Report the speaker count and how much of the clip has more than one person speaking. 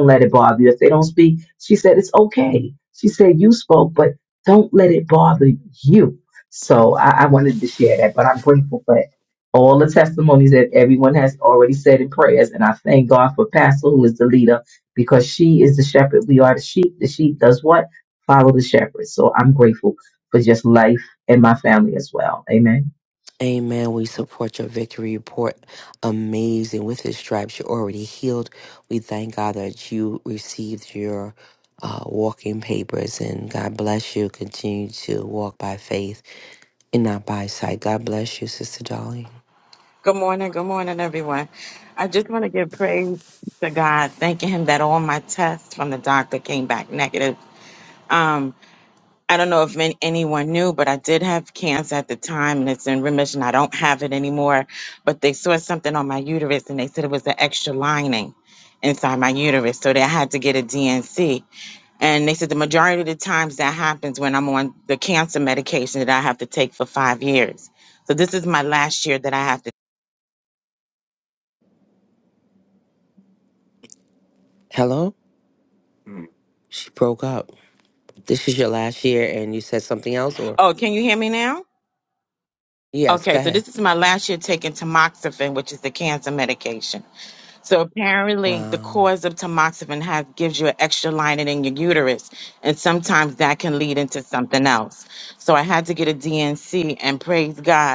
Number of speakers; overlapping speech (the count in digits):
3, about 1%